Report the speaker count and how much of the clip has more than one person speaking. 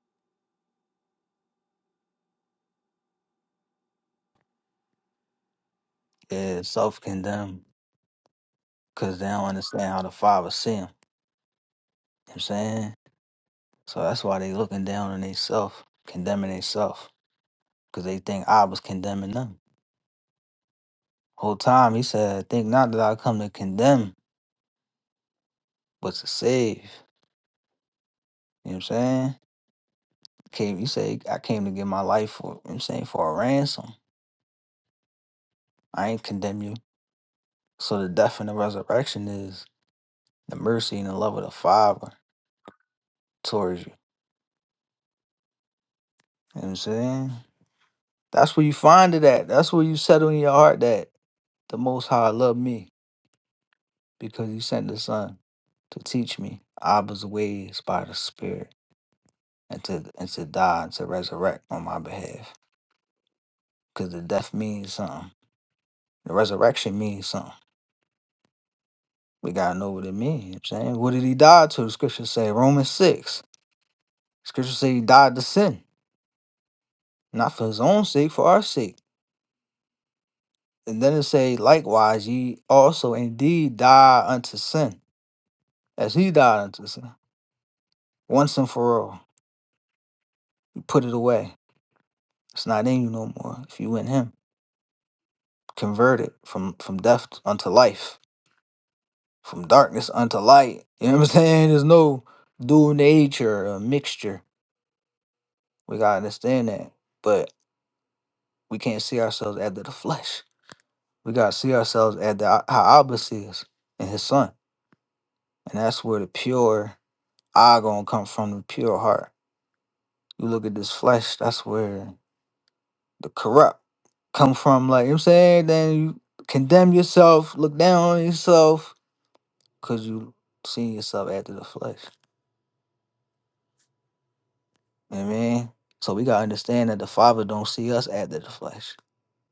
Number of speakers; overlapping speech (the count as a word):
one, no overlap